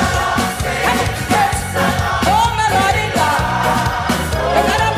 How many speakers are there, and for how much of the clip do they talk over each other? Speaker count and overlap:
one, no overlap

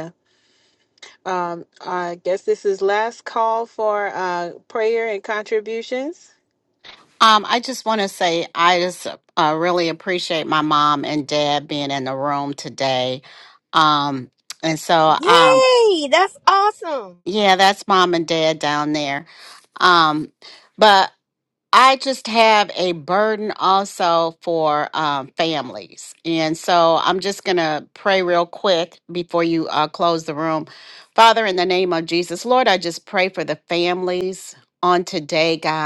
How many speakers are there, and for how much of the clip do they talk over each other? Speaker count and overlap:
three, about 1%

